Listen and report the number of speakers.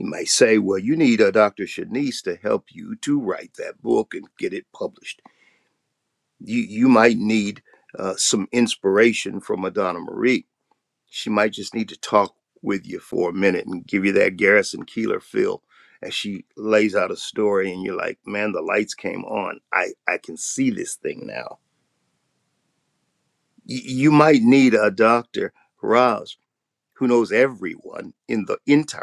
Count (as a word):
one